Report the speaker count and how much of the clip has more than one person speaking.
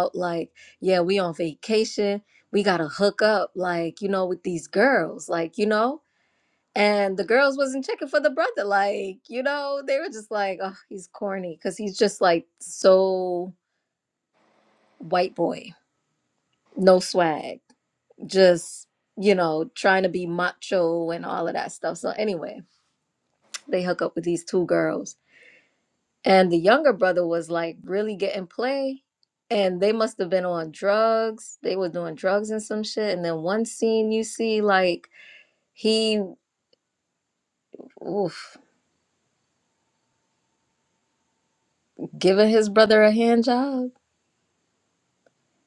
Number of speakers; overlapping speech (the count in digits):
1, no overlap